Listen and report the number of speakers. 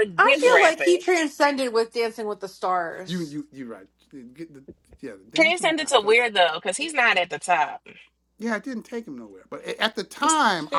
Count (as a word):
three